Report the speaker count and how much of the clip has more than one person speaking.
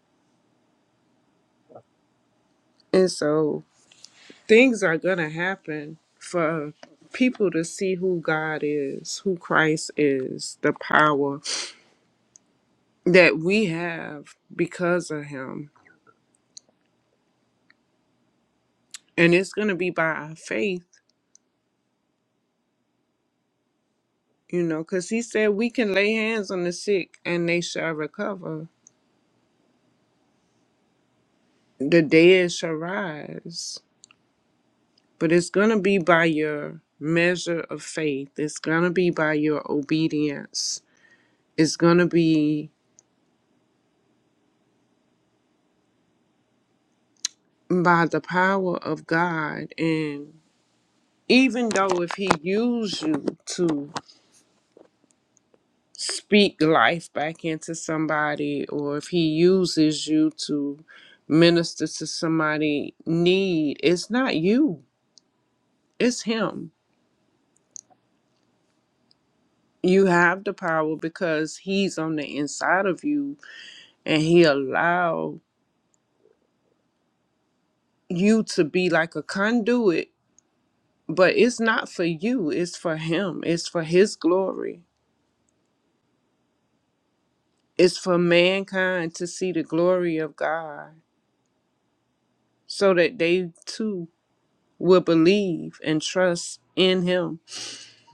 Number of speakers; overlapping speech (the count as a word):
one, no overlap